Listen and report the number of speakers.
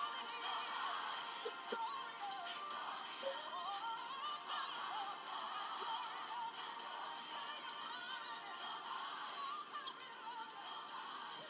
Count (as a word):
zero